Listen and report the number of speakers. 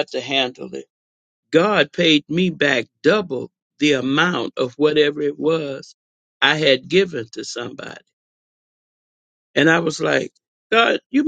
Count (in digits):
1